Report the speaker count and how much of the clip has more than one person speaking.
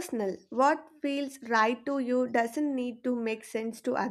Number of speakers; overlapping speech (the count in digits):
1, no overlap